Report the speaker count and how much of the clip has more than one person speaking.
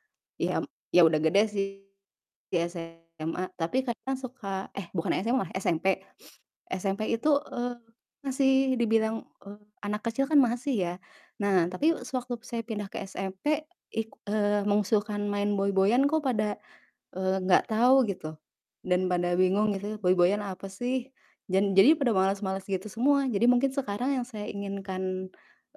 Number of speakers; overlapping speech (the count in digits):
1, no overlap